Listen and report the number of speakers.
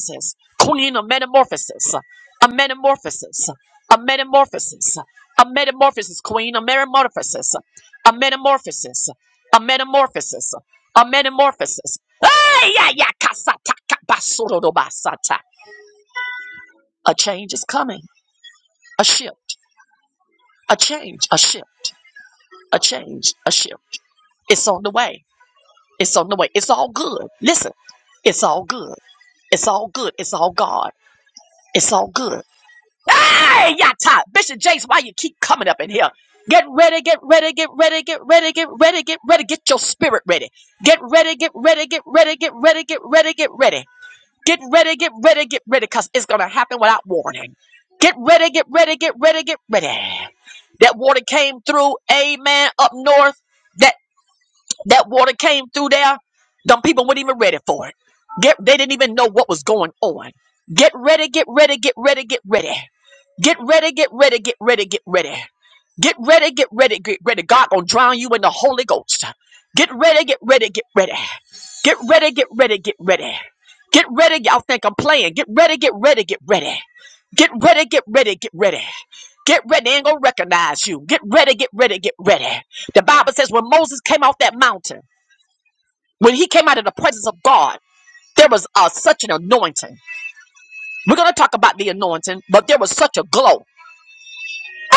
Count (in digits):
1